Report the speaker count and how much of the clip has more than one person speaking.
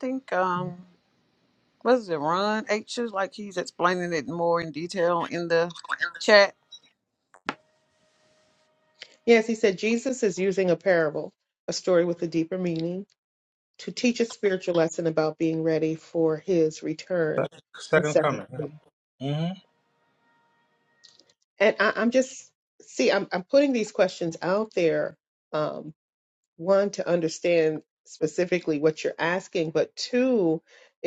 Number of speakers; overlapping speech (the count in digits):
3, about 2%